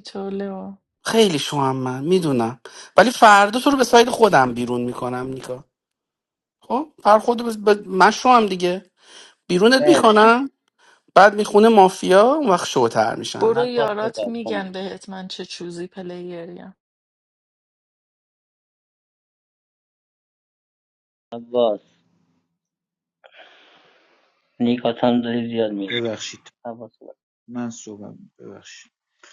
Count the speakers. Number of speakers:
4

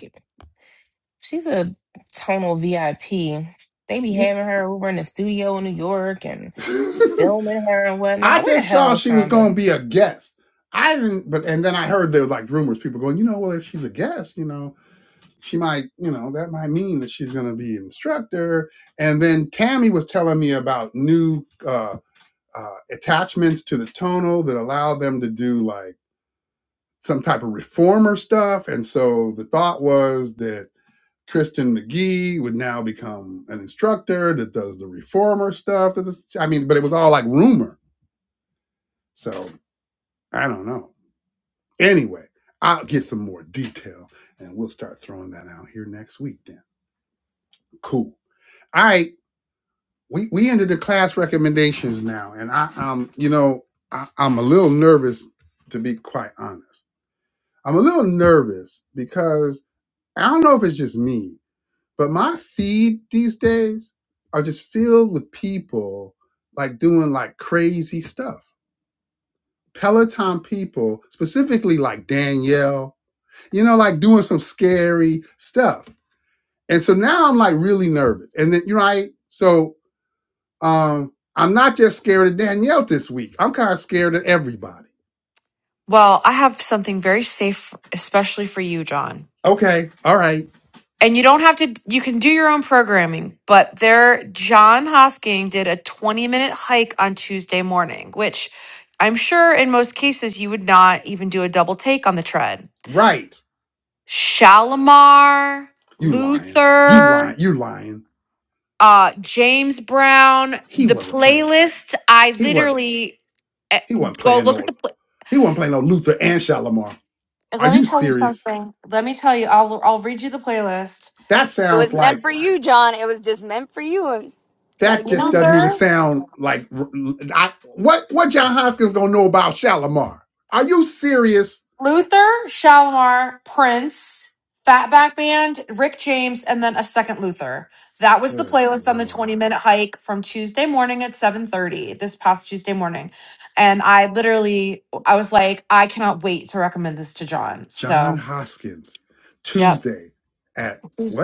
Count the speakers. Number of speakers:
4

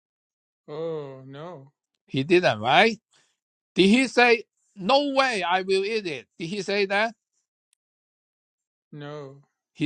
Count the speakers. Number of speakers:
2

